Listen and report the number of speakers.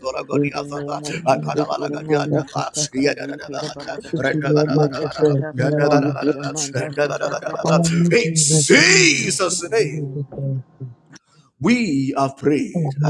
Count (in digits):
3